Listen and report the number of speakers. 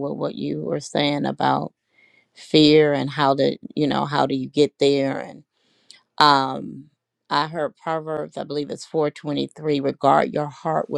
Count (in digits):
1